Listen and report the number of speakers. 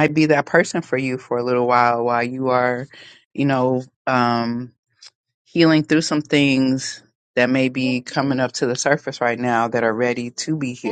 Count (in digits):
1